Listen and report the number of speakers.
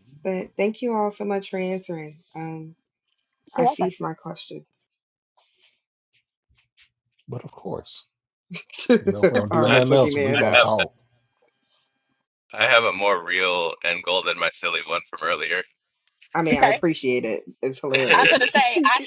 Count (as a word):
four